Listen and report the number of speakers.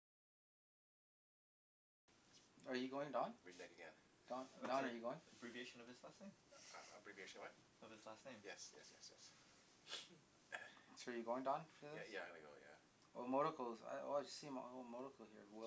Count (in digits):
3